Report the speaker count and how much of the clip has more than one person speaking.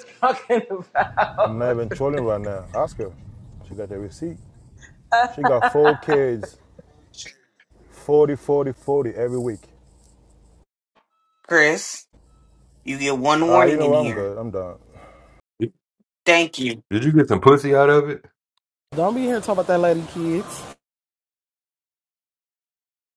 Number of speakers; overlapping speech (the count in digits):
5, about 5%